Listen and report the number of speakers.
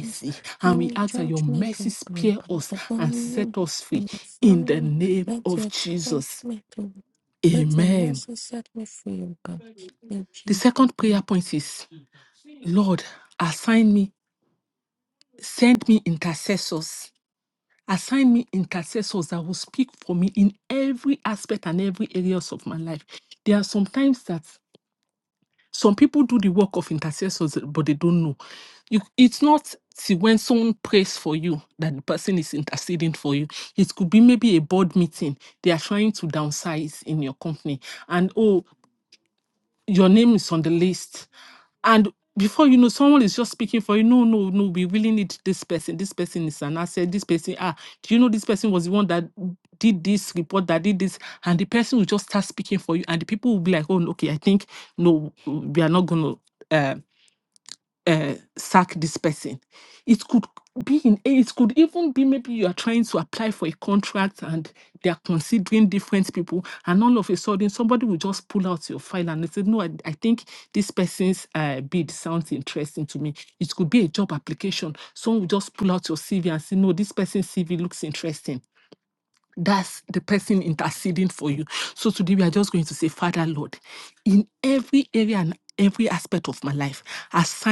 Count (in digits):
2